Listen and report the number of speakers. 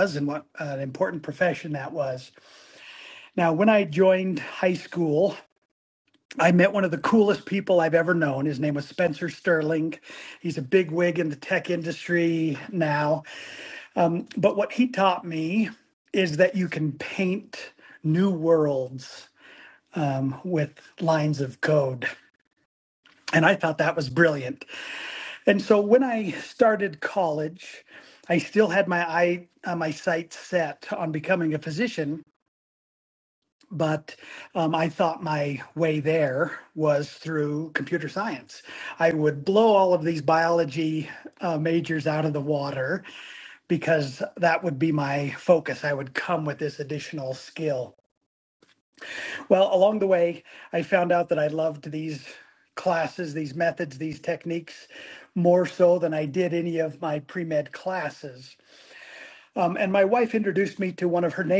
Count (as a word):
one